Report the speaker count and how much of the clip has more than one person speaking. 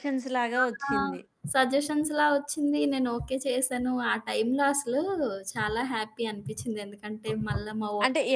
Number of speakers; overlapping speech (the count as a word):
two, about 4%